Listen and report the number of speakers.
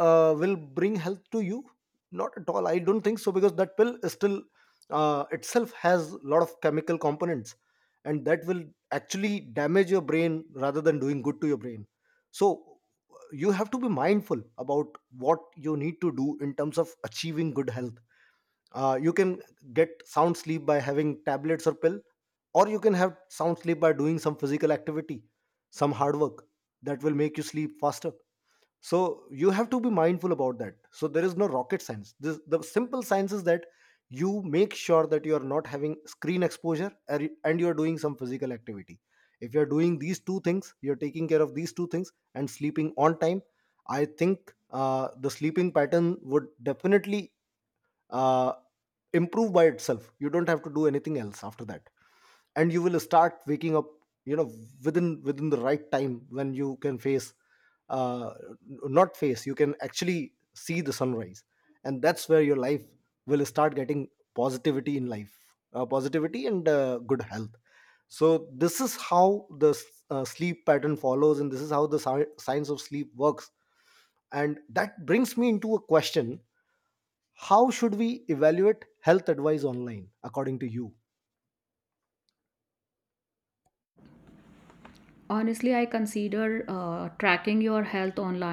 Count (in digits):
2